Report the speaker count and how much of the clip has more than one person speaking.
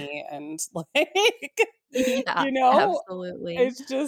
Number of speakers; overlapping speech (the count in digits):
2, about 20%